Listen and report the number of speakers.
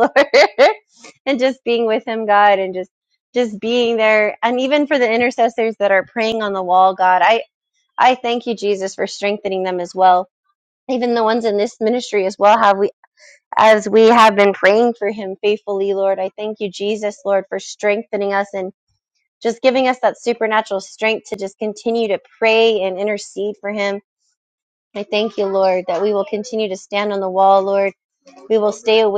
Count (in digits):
1